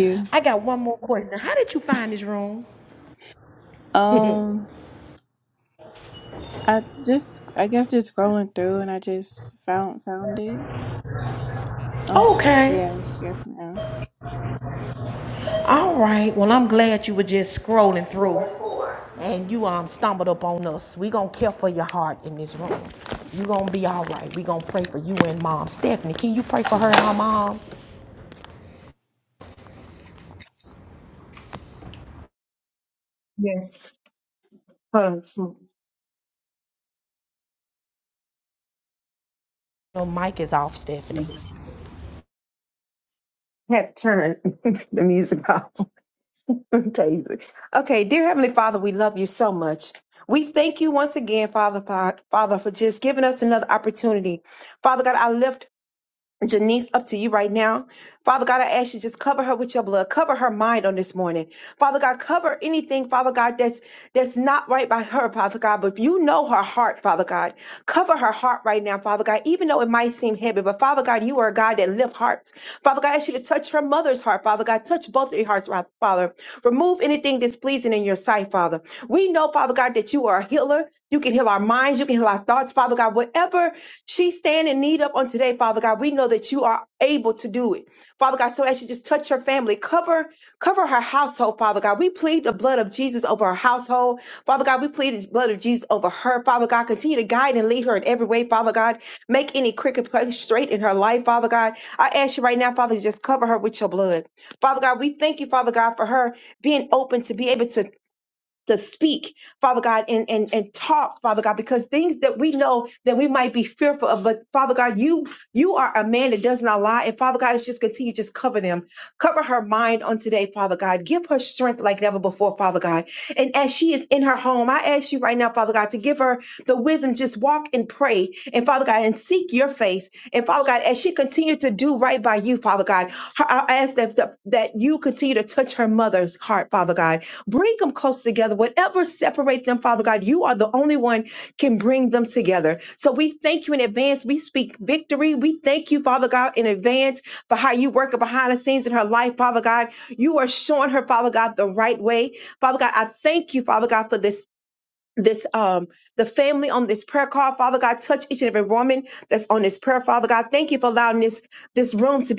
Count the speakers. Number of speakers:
3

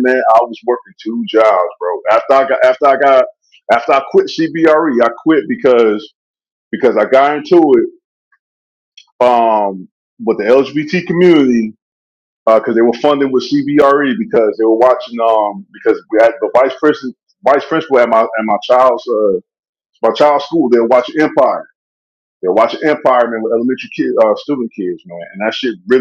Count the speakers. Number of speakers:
1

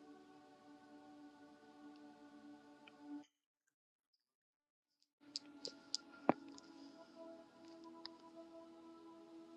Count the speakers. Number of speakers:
0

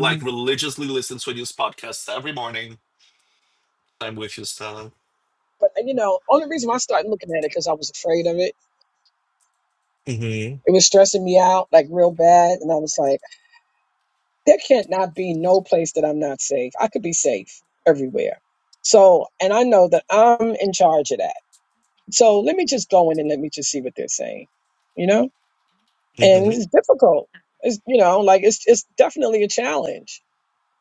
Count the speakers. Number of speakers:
2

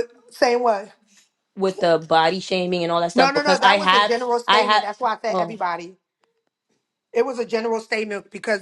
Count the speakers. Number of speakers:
2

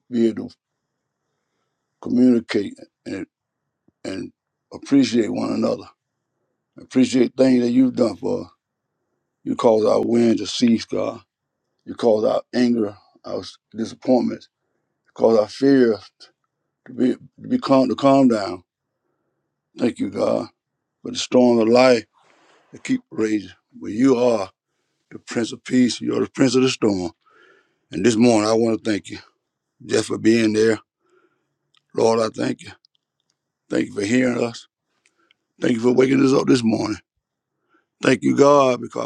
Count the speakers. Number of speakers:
1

